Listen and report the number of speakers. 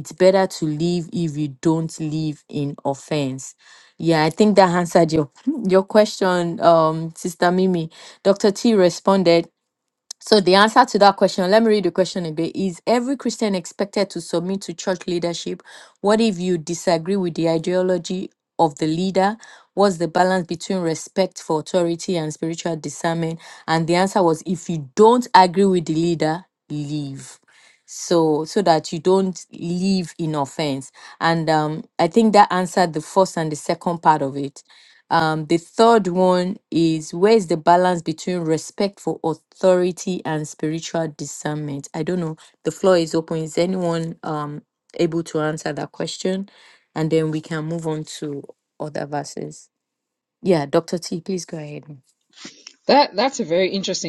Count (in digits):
2